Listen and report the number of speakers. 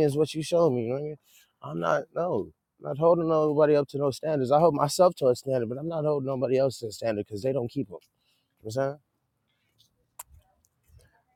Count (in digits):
1